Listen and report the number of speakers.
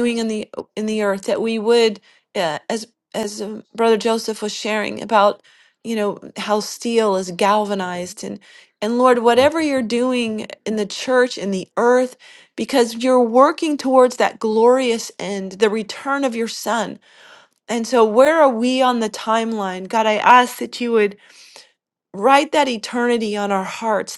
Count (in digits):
1